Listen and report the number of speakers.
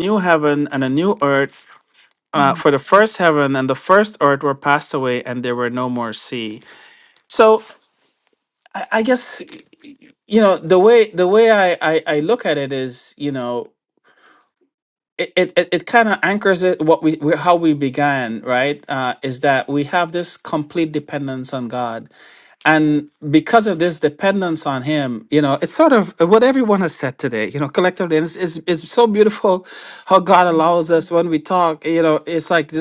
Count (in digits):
1